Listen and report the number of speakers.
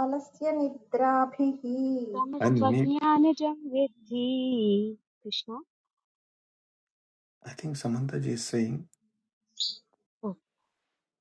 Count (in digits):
3